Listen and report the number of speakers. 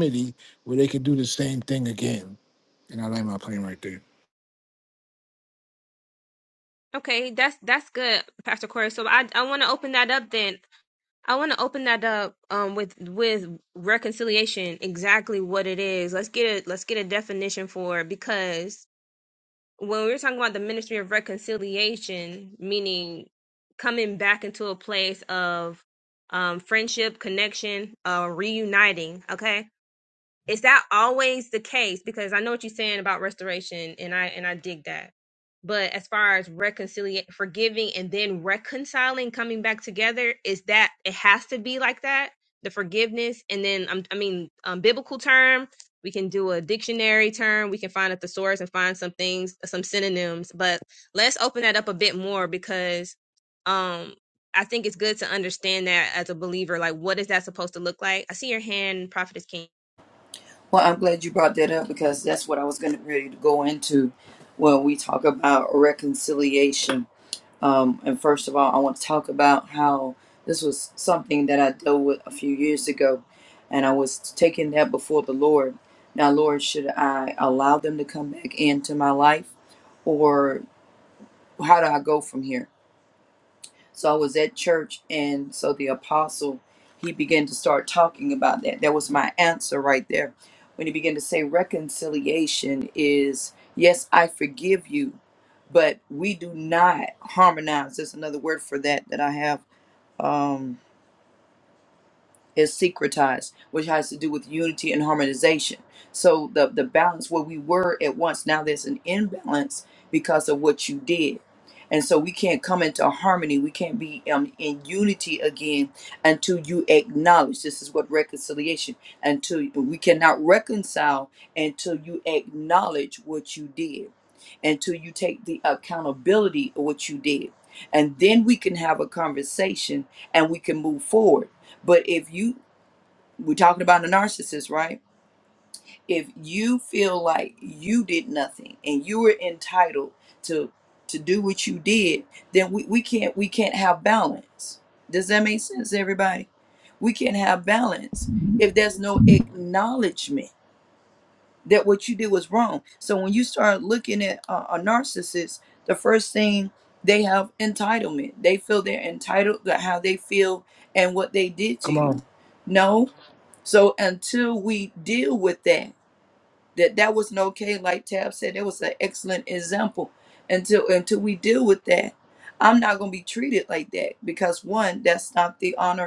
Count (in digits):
3